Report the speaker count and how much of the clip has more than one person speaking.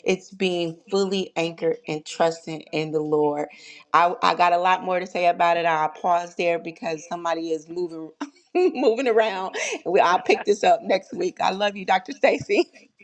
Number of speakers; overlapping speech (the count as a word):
one, no overlap